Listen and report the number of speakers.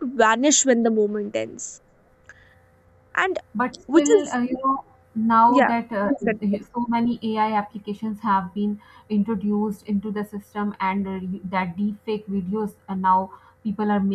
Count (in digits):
2